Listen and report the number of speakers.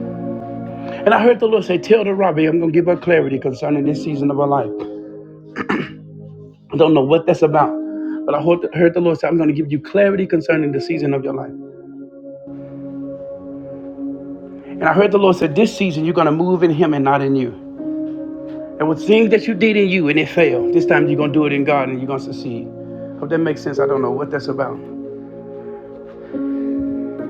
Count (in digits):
1